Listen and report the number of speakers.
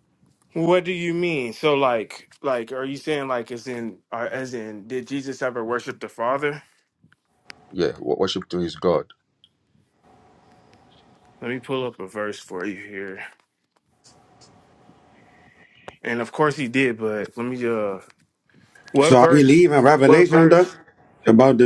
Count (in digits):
3